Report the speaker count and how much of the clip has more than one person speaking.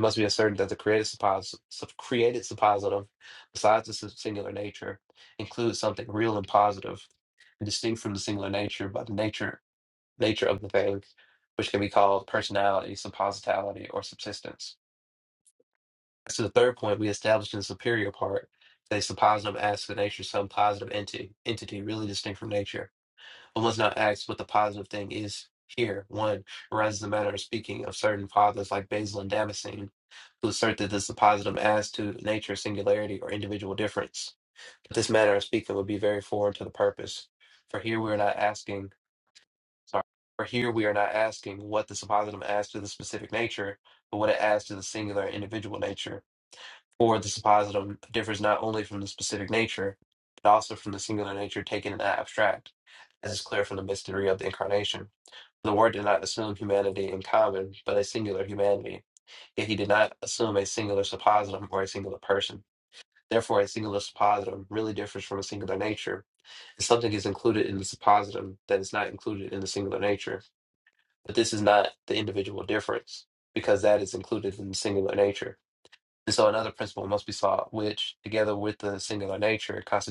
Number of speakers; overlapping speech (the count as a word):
one, no overlap